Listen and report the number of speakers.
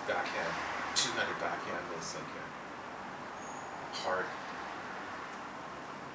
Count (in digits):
1